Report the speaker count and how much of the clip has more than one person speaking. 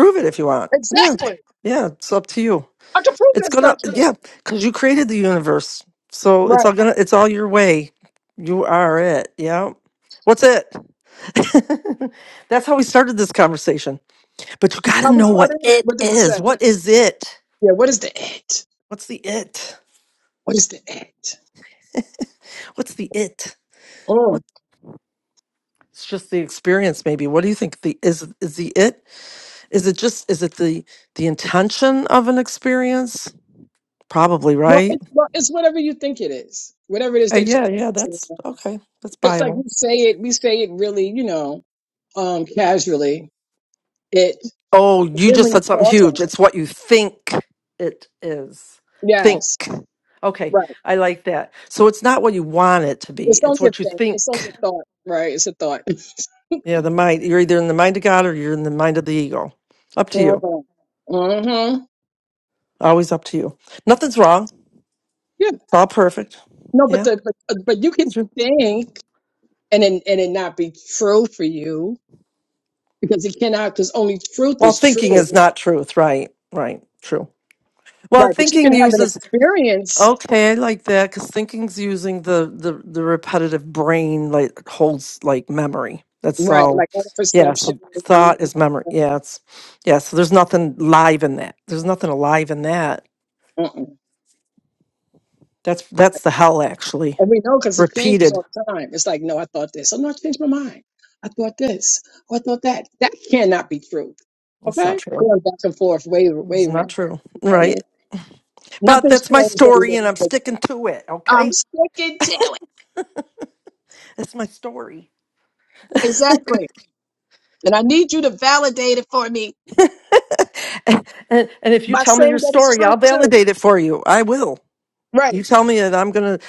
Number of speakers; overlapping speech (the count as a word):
two, about 12%